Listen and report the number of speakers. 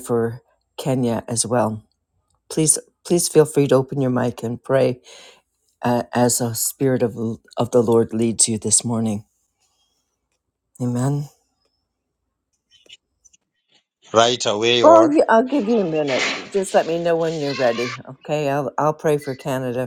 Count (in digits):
2